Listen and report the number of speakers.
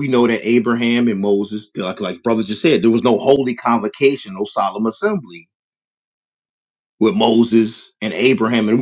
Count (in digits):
1